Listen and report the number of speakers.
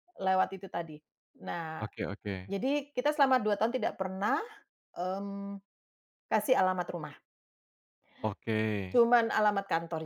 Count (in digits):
2